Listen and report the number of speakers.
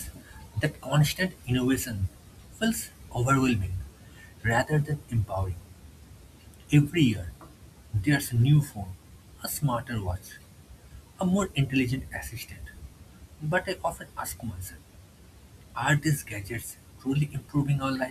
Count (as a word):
one